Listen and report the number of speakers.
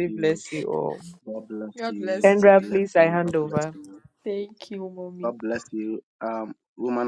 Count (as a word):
three